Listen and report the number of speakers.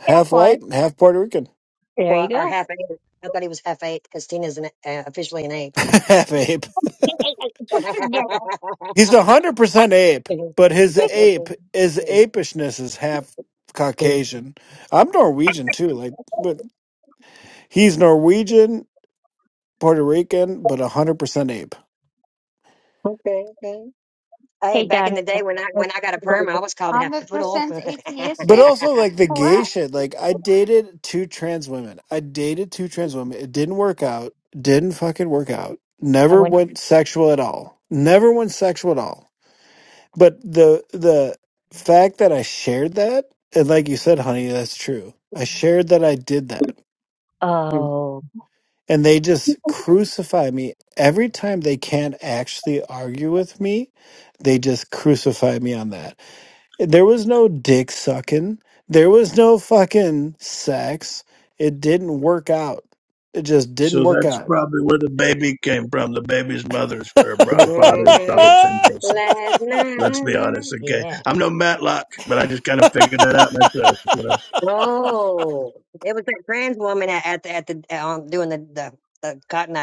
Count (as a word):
five